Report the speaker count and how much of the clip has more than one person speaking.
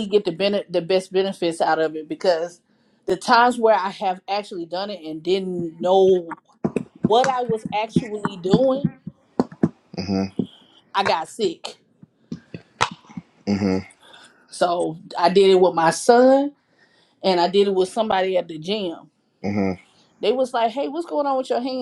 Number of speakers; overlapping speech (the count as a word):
two, no overlap